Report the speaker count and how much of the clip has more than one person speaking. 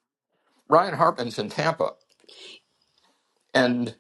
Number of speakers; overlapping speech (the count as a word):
one, no overlap